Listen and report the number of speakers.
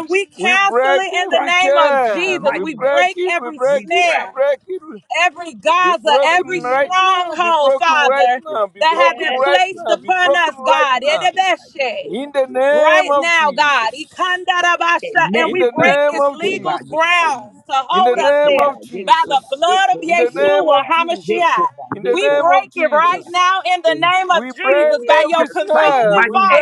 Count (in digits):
3